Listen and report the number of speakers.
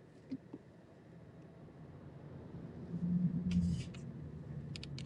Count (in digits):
0